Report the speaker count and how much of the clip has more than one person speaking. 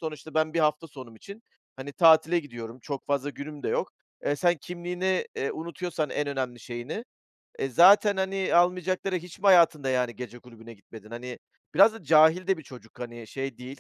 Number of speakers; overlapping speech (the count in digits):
1, no overlap